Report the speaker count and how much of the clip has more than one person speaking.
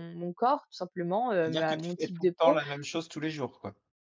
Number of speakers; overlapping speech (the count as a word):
two, about 29%